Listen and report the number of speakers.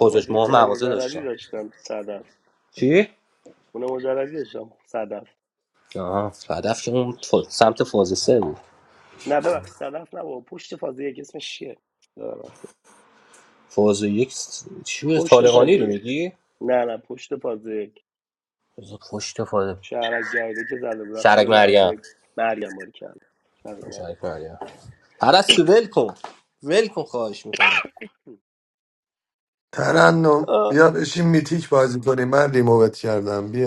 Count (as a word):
three